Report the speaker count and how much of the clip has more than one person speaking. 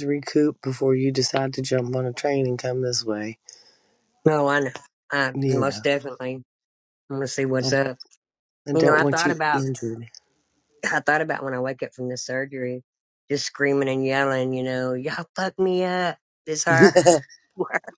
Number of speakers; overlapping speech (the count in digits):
2, about 10%